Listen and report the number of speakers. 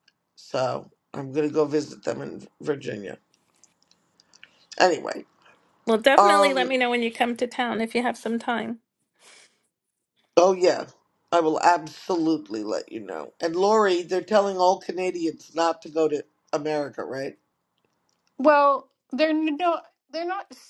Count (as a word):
three